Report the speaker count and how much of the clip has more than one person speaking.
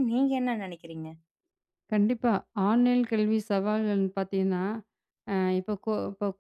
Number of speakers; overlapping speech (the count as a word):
two, no overlap